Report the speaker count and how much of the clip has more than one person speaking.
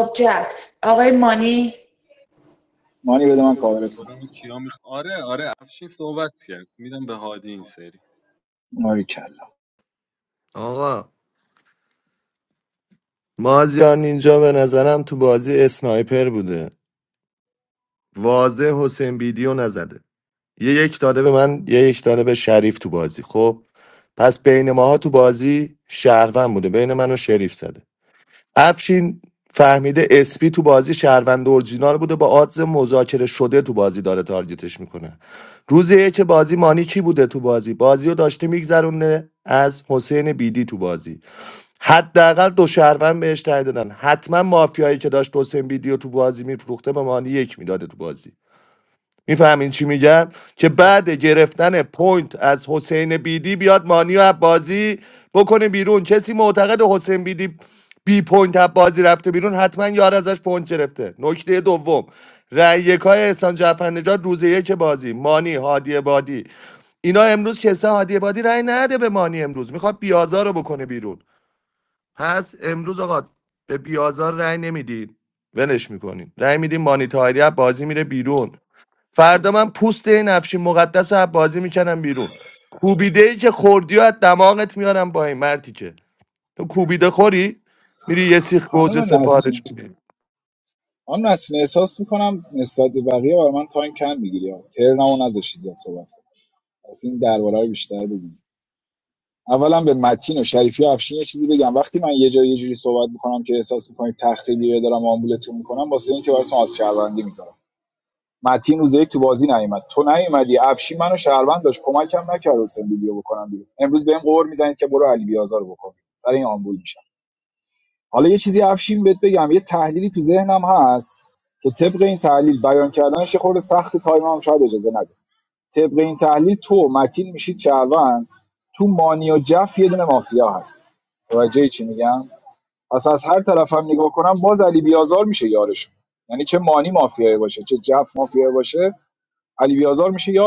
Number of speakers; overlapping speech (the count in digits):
4, about 1%